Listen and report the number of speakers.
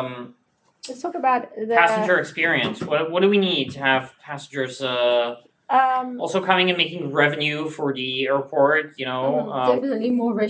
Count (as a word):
three